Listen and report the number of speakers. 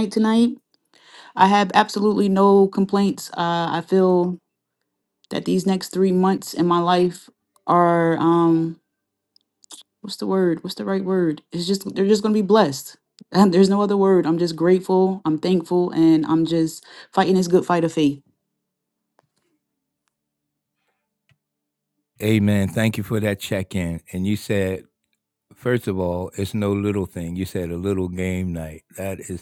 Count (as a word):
two